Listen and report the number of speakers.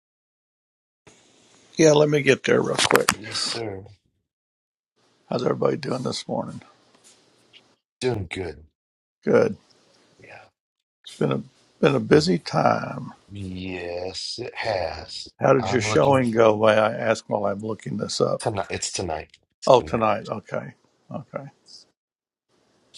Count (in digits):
2